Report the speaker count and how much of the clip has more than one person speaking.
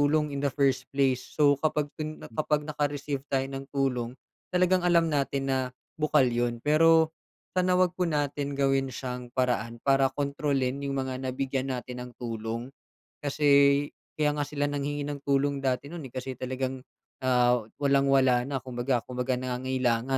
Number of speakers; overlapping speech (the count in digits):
1, no overlap